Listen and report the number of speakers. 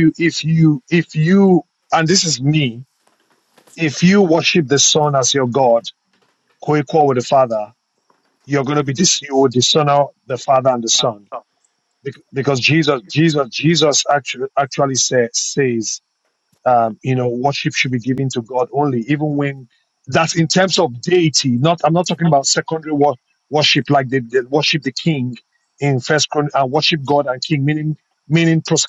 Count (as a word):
one